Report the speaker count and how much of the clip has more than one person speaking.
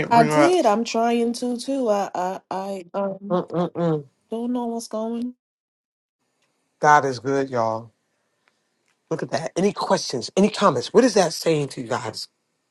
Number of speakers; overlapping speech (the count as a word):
two, about 4%